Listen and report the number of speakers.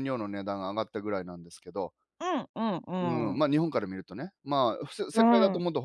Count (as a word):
two